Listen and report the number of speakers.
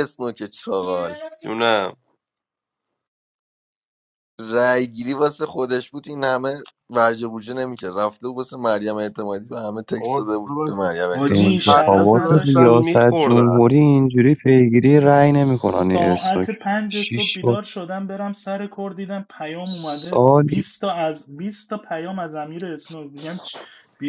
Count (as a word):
four